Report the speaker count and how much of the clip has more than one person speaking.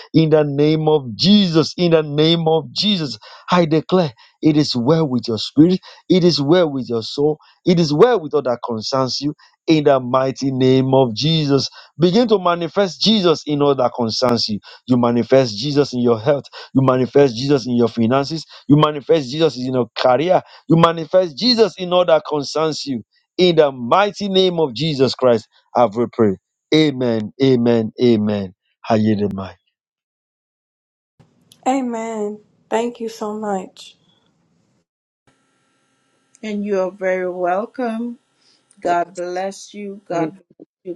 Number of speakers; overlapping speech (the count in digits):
3, no overlap